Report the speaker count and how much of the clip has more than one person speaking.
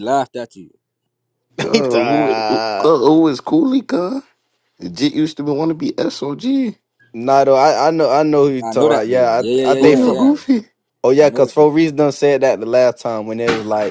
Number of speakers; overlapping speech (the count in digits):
3, about 25%